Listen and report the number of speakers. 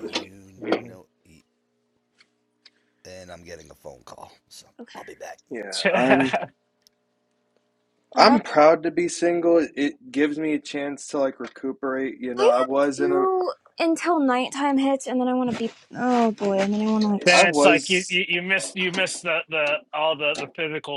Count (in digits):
4